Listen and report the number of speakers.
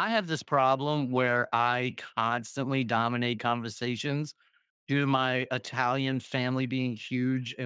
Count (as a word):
one